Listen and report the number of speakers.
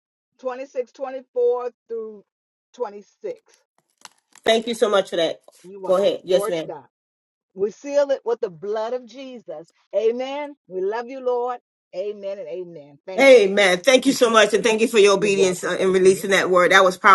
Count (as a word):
two